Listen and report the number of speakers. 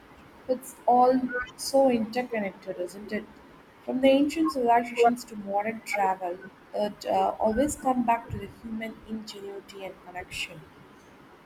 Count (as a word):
one